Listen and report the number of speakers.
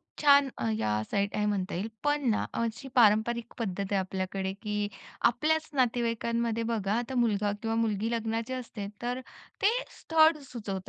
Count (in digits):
1